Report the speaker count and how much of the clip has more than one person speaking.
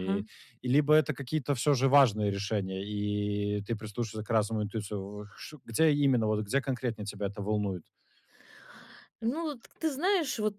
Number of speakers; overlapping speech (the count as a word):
two, about 2%